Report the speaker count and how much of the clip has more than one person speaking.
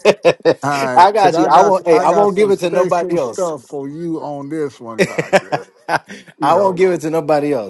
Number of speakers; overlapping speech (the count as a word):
two, about 38%